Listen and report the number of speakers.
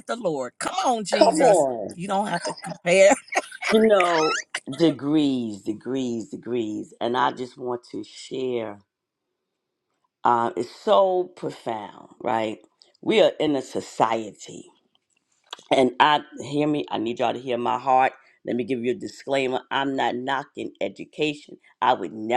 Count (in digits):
2